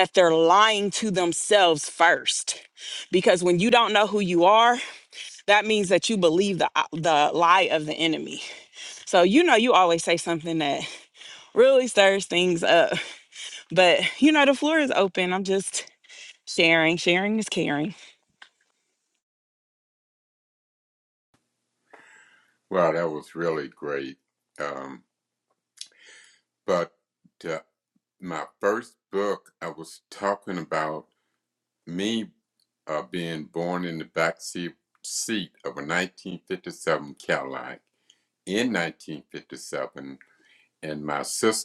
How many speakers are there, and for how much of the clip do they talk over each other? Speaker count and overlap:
2, no overlap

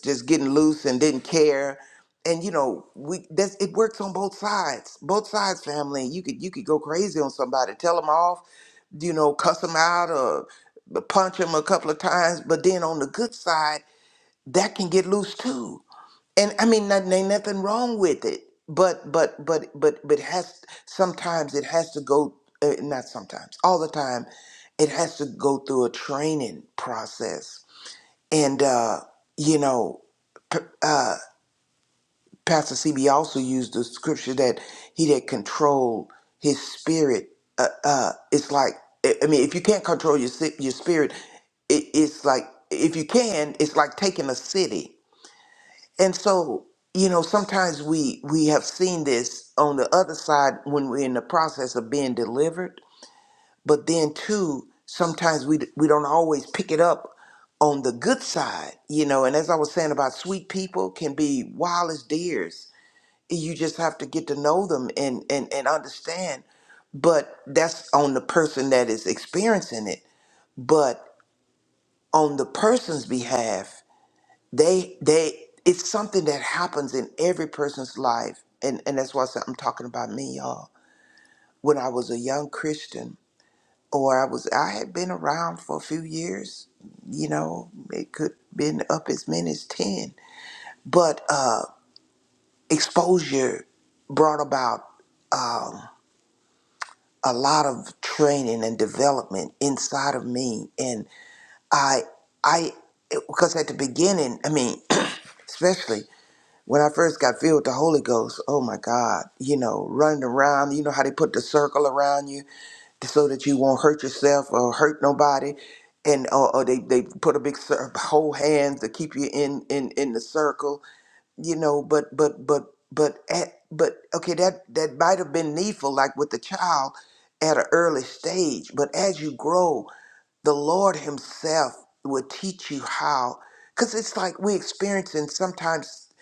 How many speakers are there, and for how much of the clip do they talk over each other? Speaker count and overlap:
1, no overlap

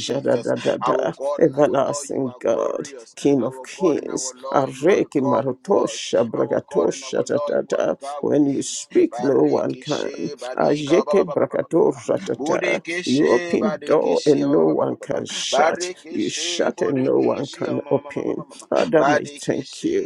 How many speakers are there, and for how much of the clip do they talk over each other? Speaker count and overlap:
2, about 81%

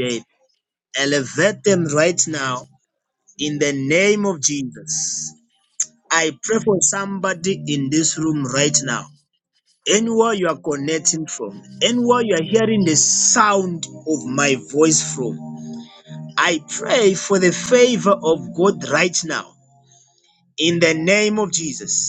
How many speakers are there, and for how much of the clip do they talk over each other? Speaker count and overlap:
1, no overlap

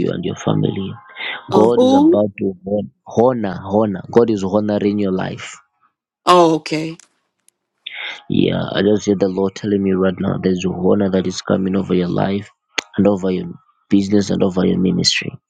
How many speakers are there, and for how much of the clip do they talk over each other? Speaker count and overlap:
2, about 4%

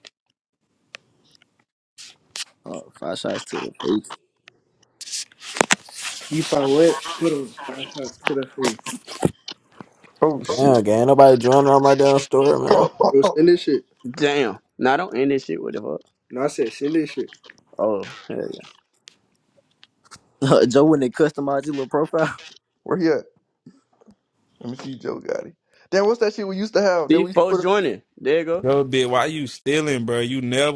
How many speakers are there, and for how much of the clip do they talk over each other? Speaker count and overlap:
6, about 3%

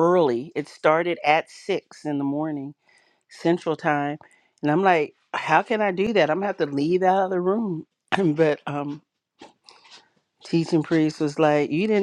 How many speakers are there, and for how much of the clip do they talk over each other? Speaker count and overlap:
1, no overlap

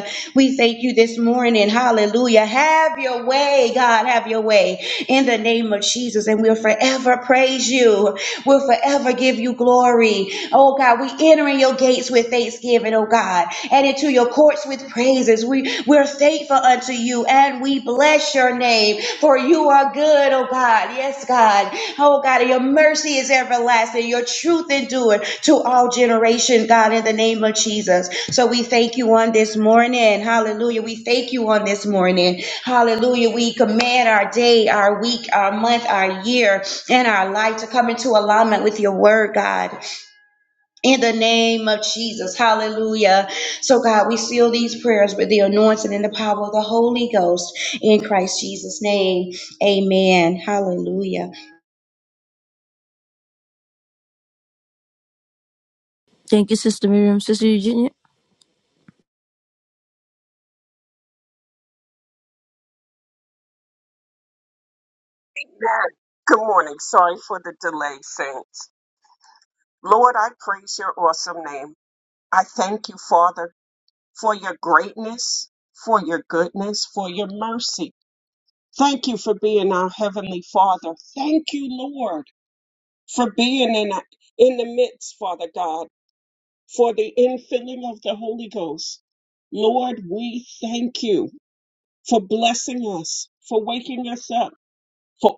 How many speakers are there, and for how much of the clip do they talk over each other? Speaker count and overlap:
3, no overlap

